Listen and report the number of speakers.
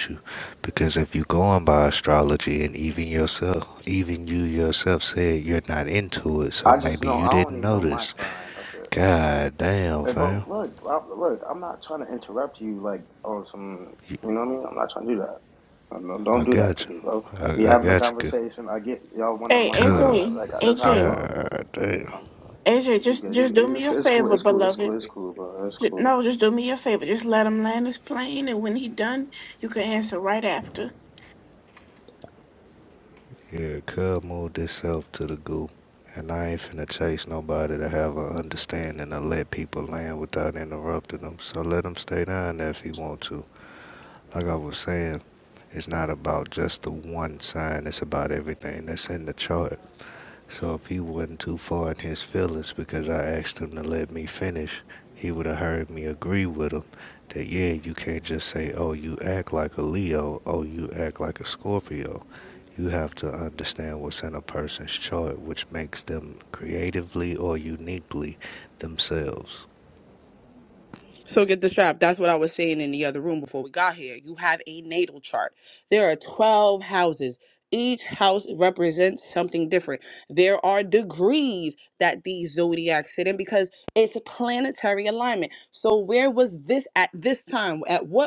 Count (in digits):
4